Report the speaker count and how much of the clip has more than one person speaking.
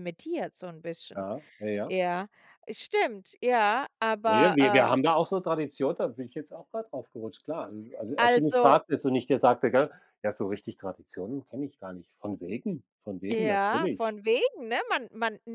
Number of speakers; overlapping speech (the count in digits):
2, about 13%